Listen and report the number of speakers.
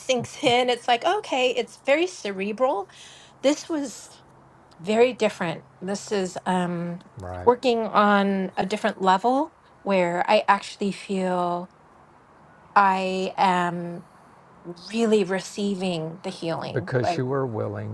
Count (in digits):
2